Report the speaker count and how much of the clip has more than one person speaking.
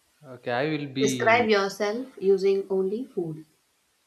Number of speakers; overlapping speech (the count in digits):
2, about 13%